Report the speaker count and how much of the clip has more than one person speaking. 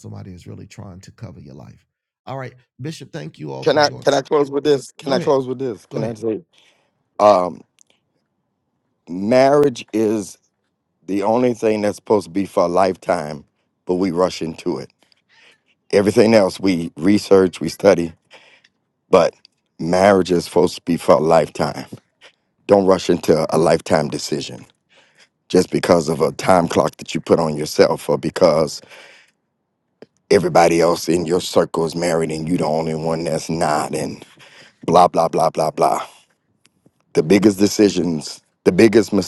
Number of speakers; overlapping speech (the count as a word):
two, about 3%